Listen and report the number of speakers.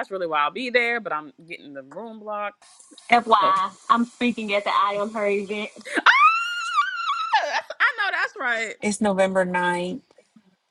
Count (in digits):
3